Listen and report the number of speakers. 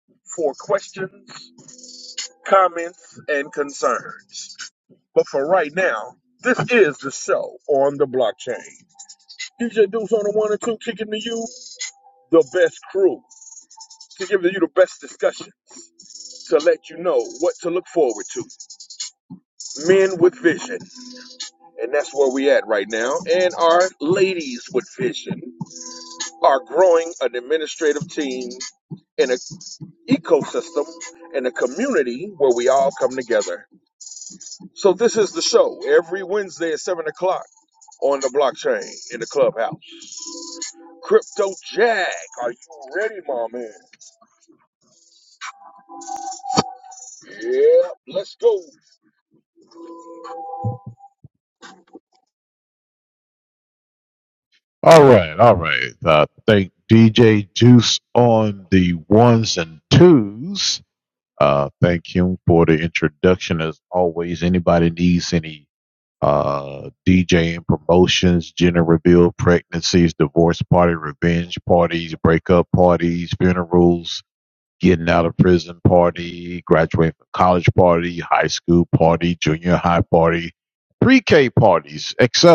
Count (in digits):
2